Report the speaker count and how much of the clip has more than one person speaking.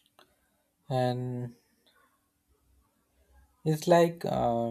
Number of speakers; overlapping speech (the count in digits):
1, no overlap